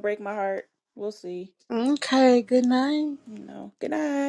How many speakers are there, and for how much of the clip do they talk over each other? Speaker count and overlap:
two, no overlap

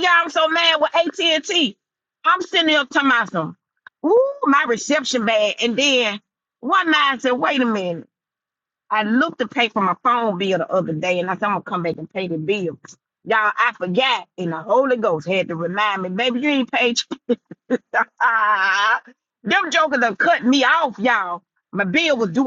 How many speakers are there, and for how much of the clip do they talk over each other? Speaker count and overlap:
one, no overlap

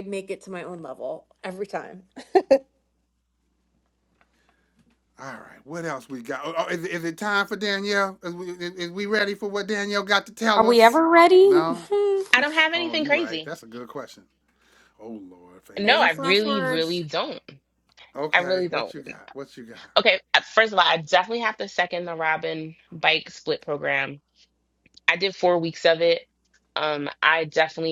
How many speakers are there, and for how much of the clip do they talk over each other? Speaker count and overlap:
four, about 11%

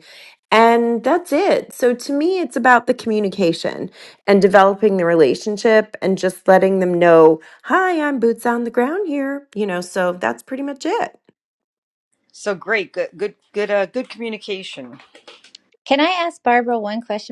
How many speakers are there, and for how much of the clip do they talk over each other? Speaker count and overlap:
three, no overlap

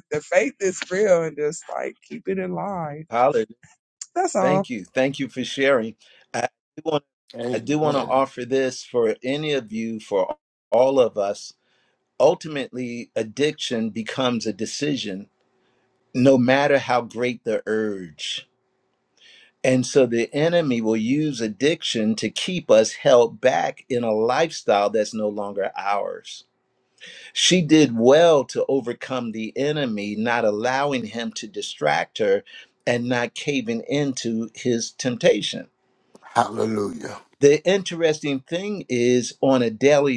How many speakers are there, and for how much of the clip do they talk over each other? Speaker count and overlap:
three, about 2%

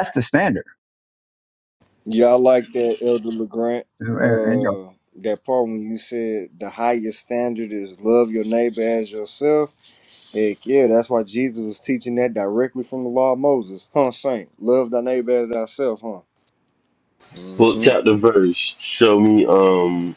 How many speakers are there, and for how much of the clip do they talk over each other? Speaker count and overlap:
three, about 4%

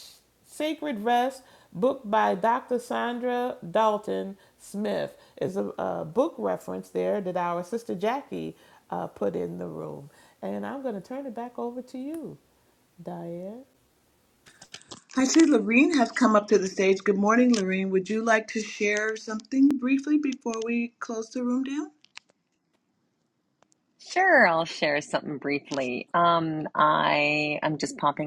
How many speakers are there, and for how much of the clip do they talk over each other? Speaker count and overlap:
three, no overlap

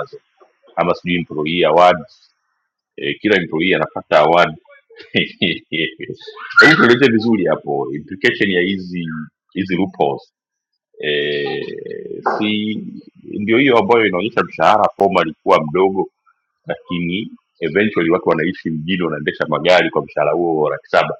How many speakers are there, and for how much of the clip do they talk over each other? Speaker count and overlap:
one, no overlap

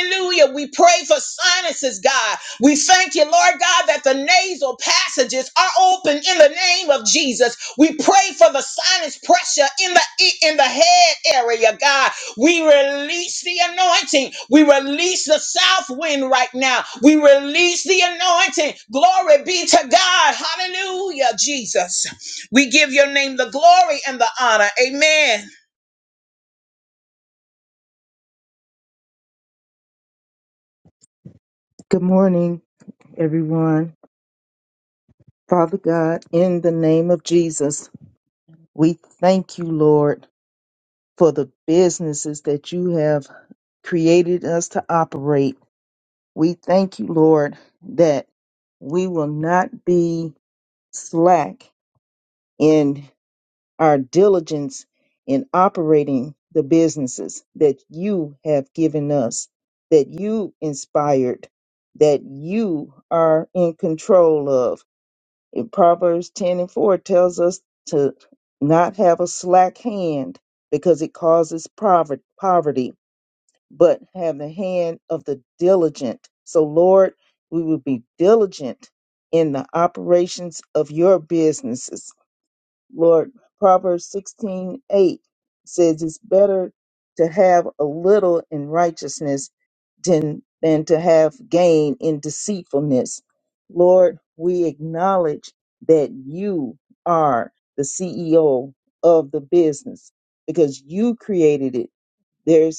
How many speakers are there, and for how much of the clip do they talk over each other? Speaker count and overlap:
two, no overlap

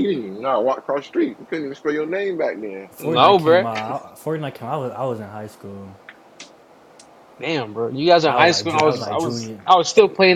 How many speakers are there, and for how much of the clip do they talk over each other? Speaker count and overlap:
three, about 17%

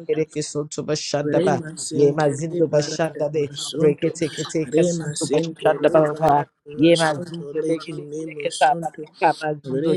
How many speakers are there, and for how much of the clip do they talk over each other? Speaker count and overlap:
two, about 66%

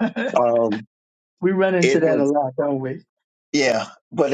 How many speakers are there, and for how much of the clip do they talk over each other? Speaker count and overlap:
two, about 10%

